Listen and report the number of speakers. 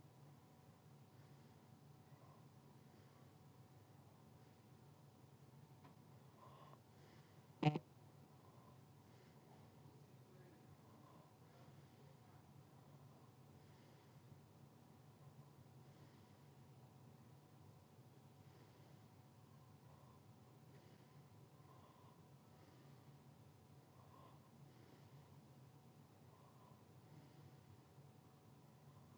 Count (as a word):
zero